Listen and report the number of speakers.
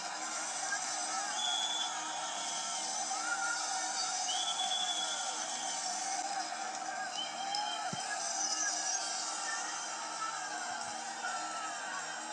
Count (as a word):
zero